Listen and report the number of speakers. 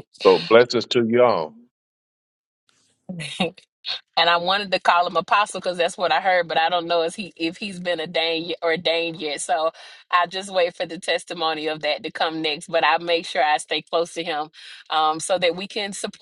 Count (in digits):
2